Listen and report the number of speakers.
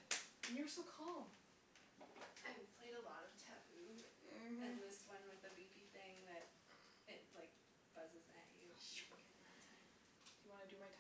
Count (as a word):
two